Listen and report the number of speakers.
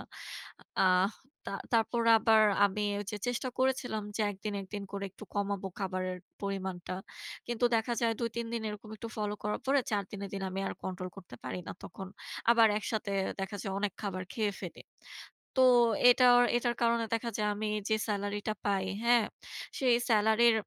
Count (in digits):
1